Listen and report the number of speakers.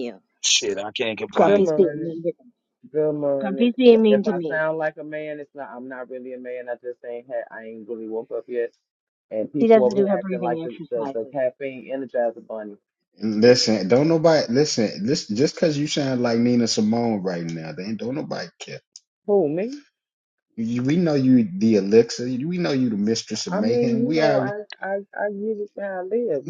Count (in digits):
4